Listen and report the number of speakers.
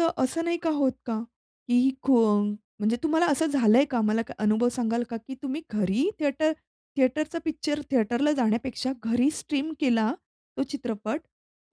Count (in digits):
1